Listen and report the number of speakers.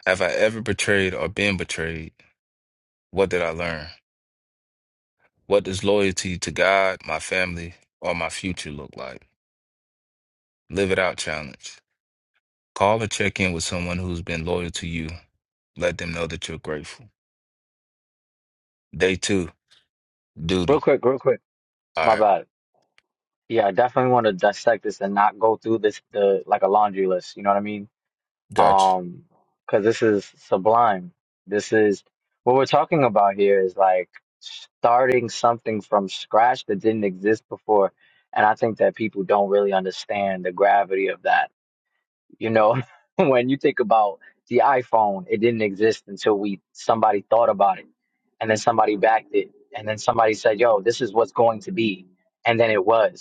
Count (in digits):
2